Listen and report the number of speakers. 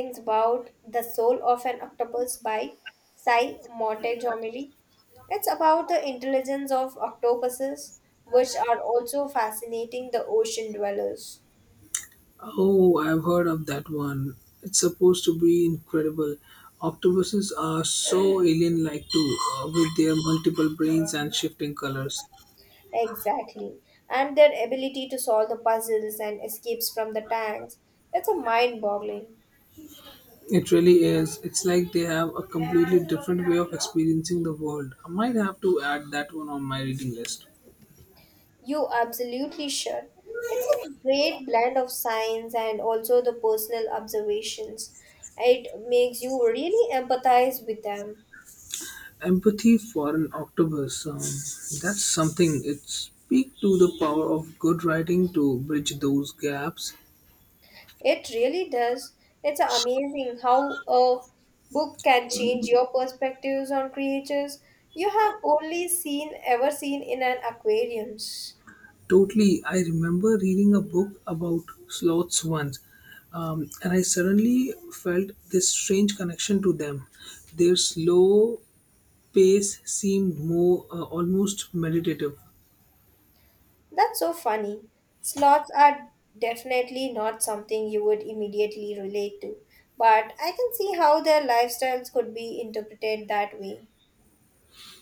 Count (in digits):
2